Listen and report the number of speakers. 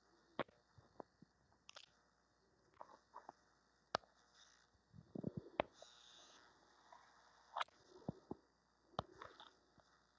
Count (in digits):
0